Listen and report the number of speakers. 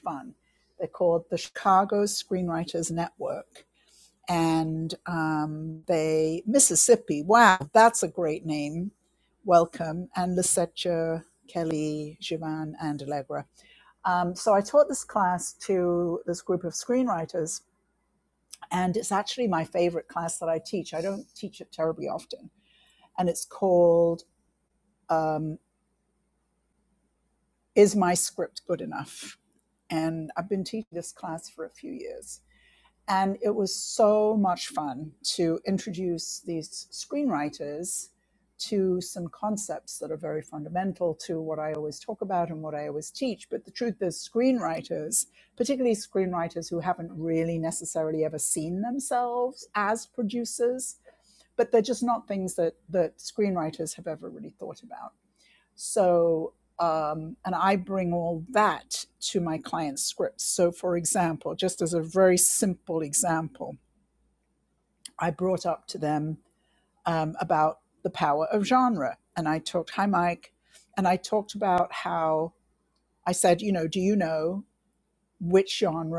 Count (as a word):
one